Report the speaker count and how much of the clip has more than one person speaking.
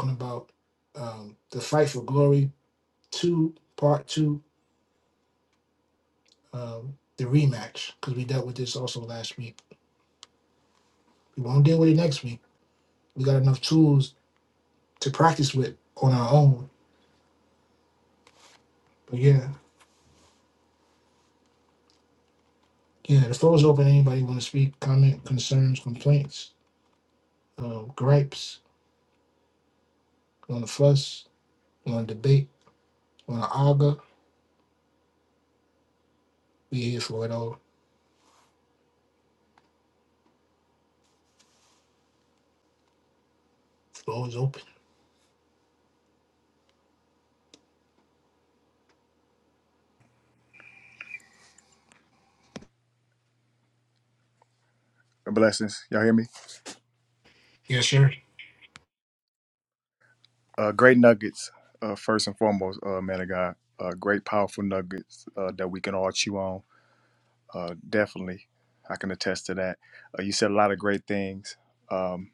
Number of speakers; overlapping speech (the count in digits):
2, no overlap